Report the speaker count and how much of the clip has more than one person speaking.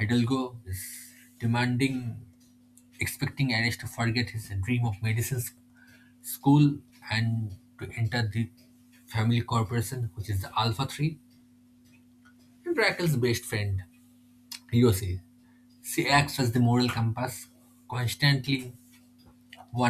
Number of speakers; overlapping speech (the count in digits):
1, no overlap